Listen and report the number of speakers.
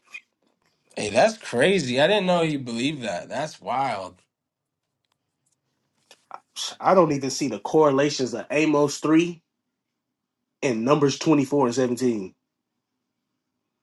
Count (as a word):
two